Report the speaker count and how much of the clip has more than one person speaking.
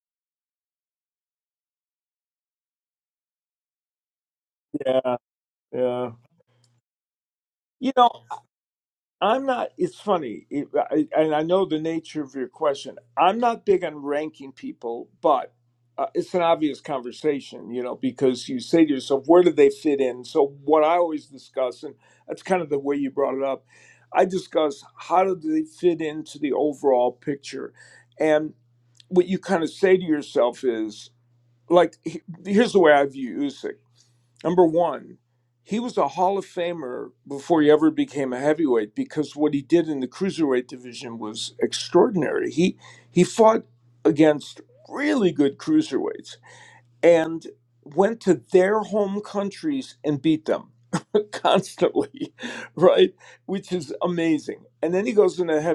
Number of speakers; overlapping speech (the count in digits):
1, no overlap